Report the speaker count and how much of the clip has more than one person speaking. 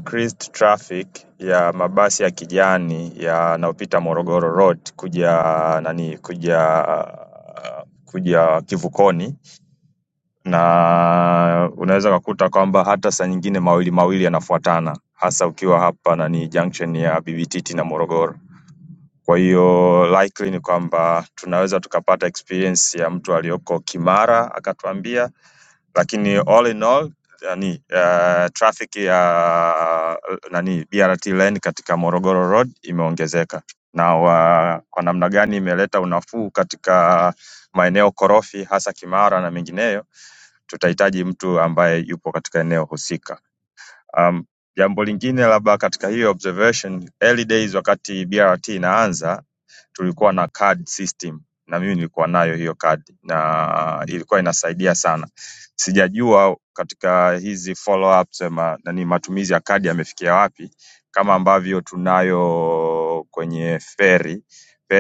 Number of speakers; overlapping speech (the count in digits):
1, no overlap